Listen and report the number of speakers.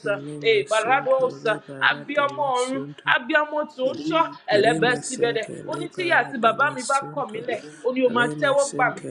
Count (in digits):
2